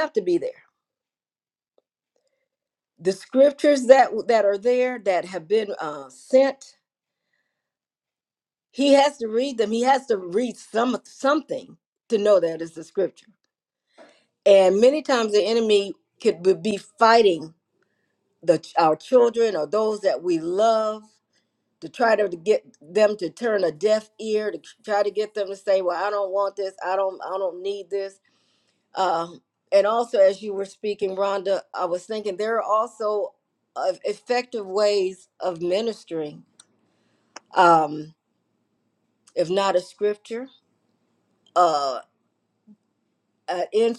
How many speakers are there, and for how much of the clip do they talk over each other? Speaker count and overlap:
one, no overlap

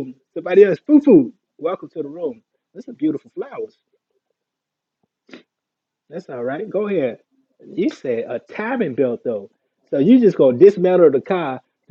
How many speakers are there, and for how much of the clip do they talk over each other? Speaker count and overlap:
one, no overlap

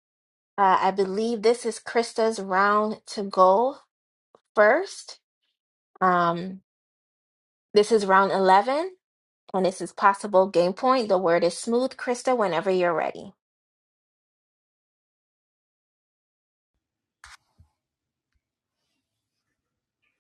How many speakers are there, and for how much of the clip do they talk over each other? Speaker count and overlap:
one, no overlap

